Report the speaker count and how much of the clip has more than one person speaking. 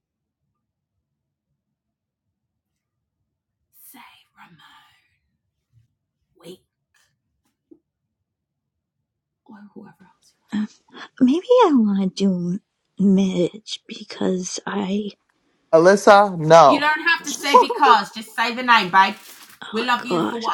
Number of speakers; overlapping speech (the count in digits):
3, about 6%